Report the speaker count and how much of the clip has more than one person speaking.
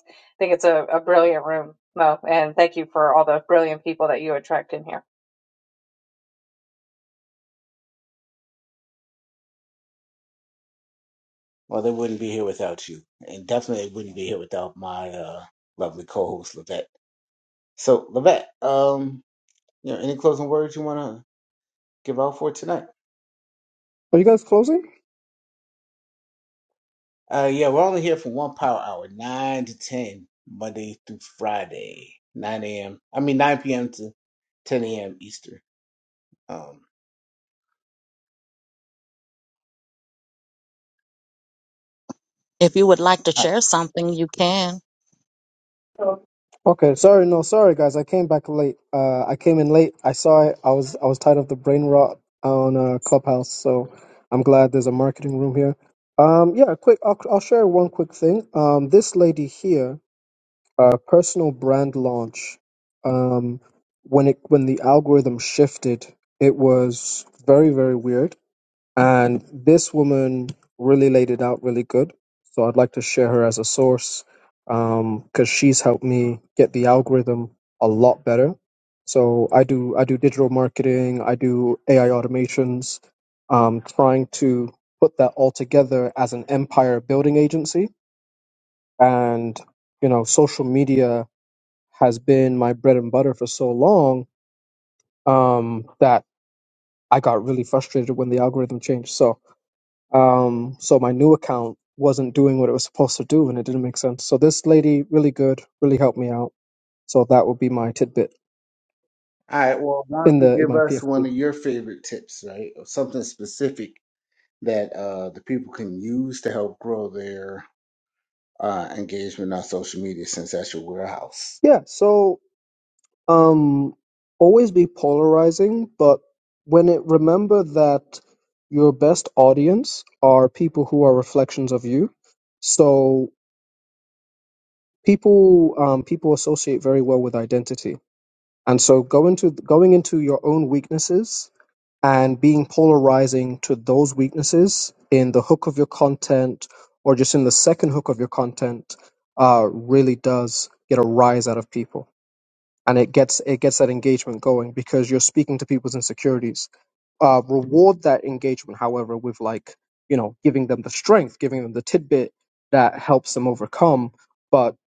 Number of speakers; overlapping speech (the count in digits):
4, about 1%